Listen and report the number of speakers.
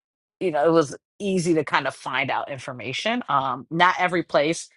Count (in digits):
1